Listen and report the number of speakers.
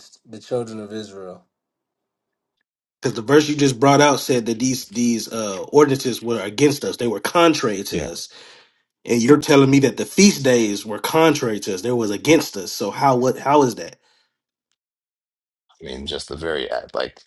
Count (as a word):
three